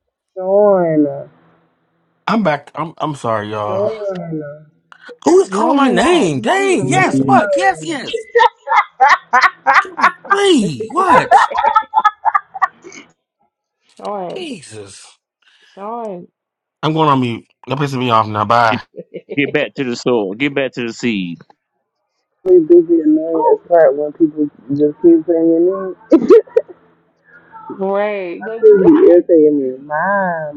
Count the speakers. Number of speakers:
four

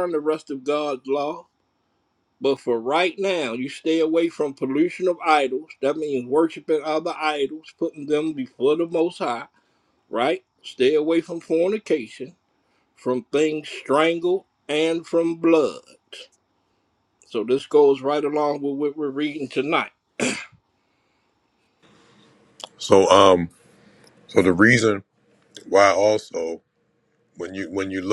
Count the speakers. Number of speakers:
two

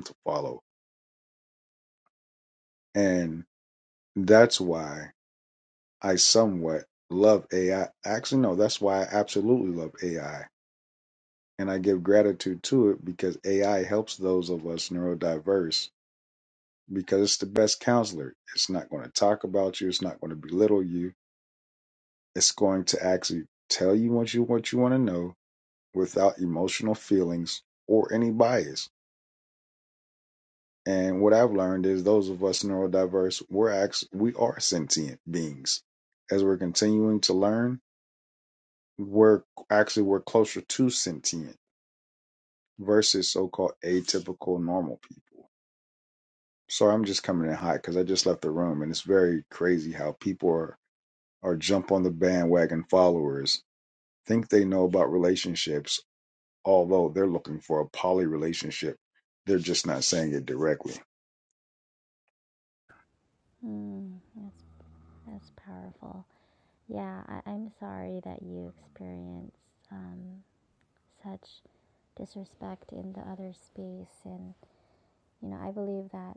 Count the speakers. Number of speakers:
two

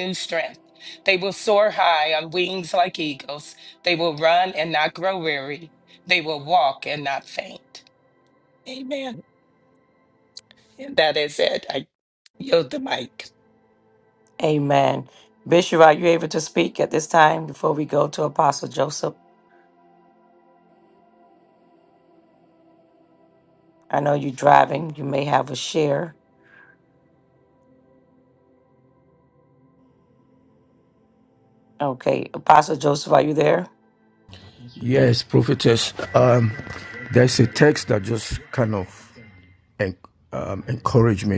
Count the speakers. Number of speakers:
three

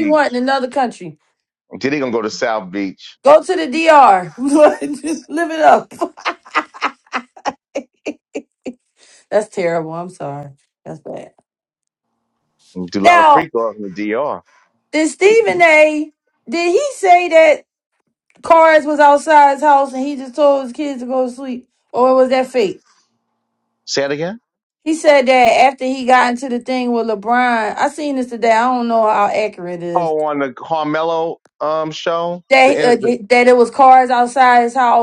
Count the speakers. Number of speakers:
two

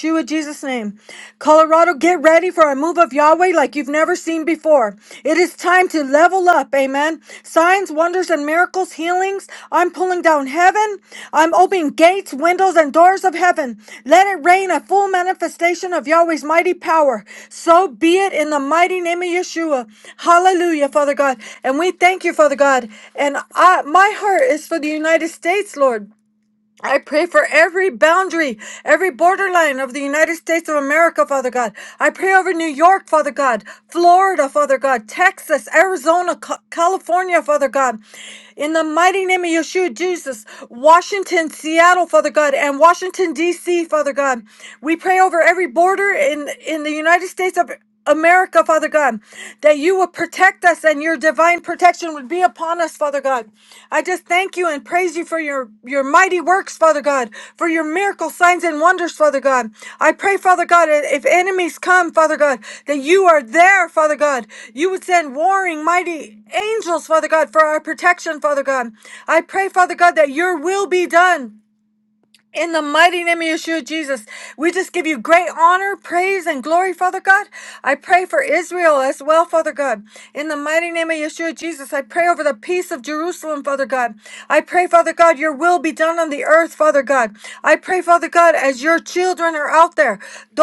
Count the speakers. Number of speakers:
one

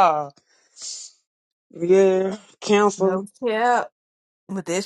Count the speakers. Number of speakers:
two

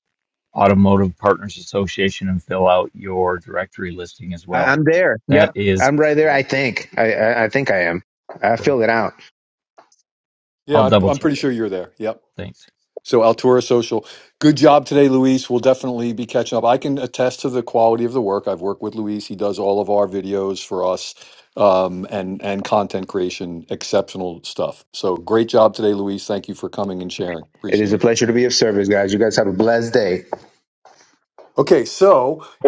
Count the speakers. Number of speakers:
three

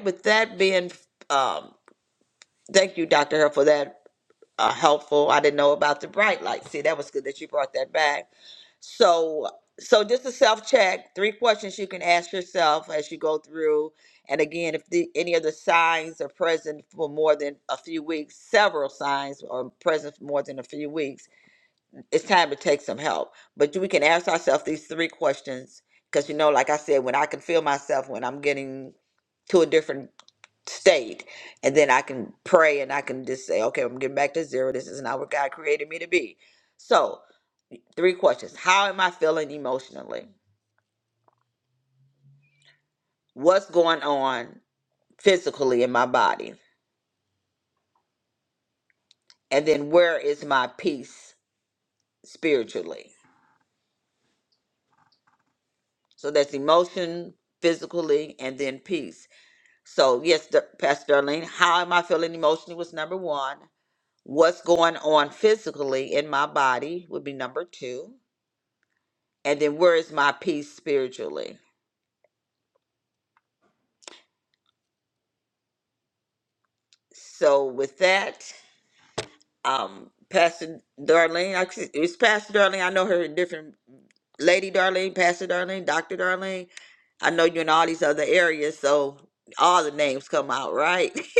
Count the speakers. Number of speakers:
one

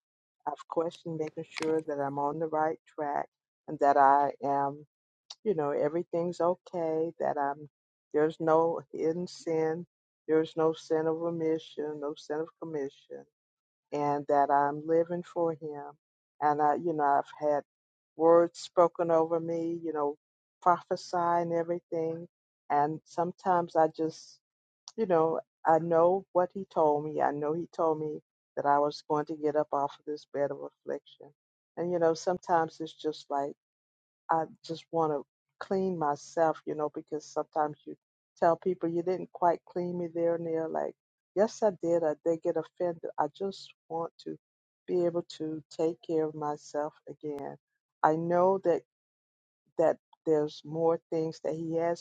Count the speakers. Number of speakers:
one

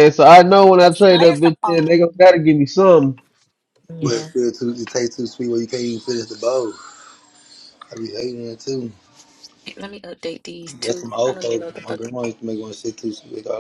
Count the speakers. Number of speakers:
three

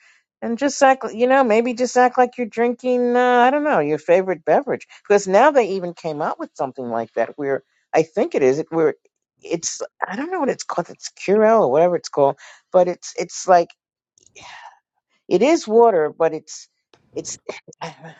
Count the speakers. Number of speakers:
one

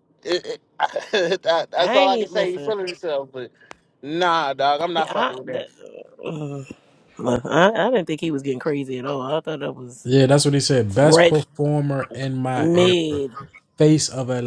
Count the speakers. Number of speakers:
three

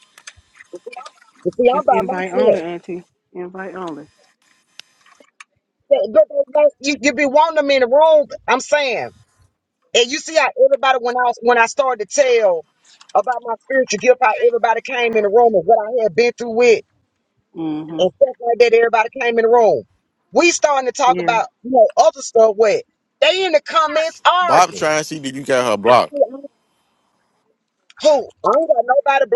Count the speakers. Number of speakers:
three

